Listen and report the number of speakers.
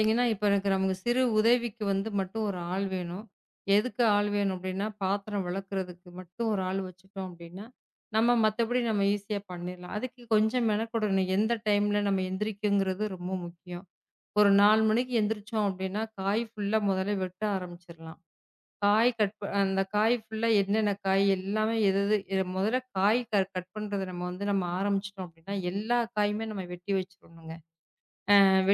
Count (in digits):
1